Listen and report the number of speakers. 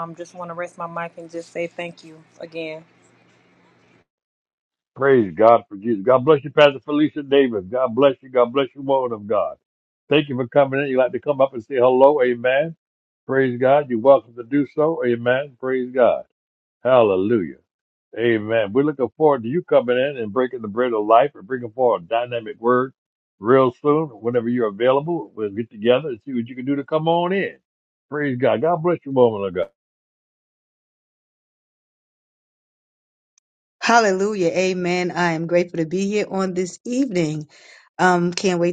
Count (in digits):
3